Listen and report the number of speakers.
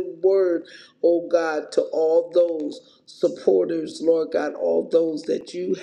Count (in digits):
1